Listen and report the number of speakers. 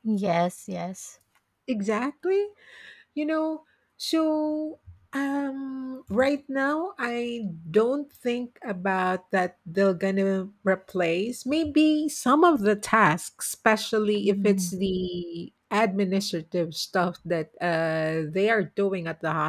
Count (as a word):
two